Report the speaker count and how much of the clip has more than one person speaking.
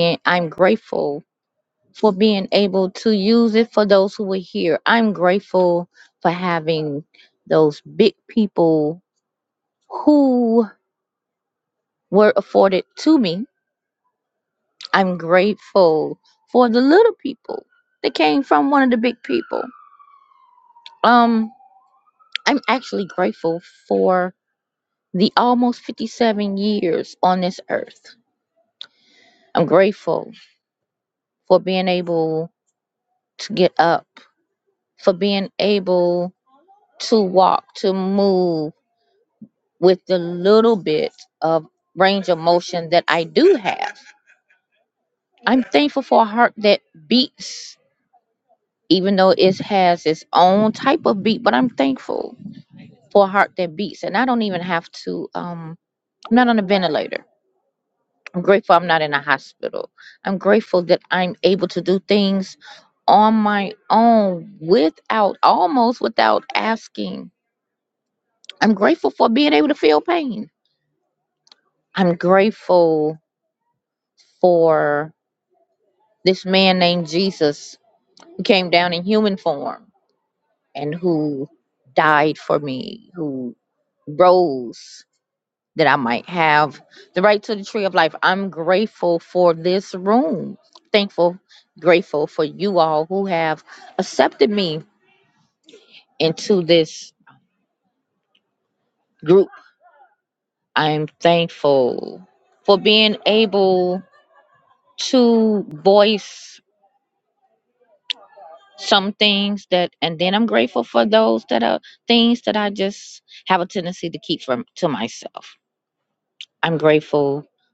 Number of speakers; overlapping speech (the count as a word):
one, no overlap